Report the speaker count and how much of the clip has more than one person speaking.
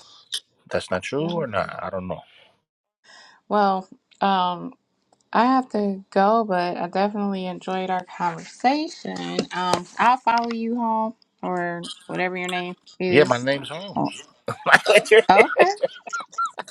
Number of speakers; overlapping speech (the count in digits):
2, about 3%